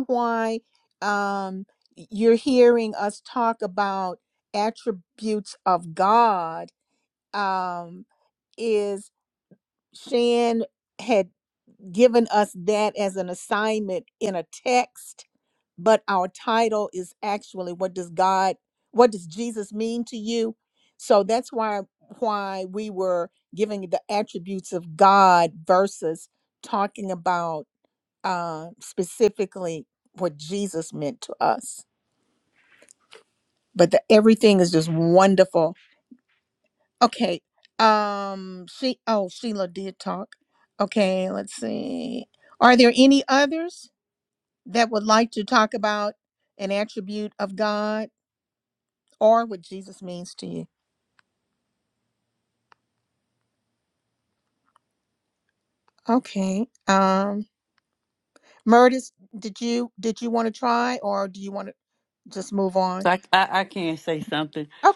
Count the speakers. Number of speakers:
2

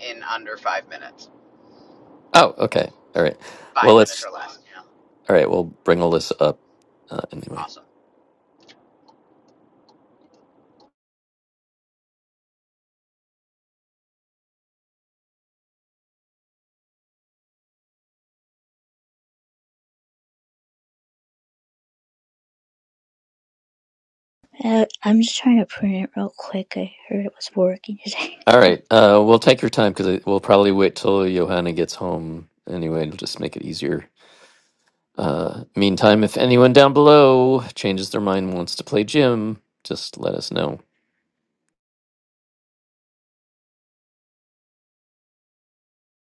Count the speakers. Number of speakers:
3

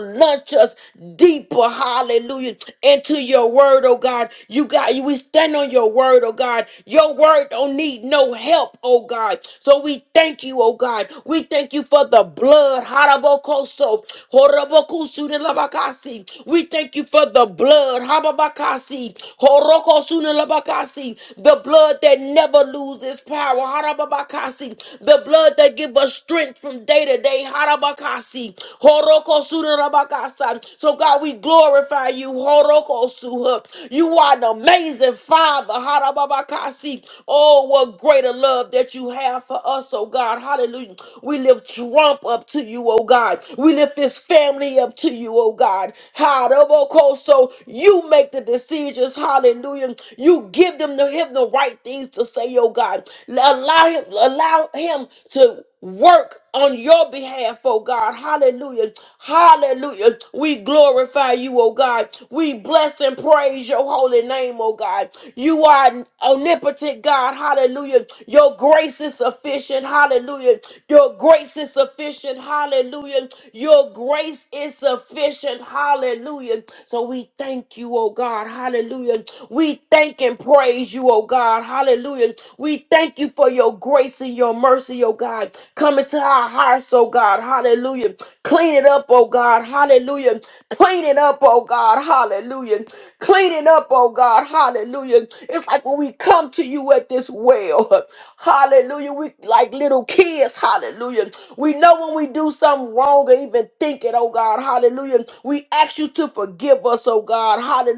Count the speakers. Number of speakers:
1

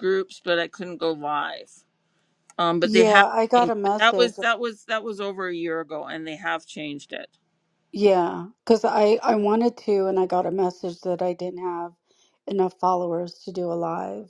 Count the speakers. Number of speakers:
2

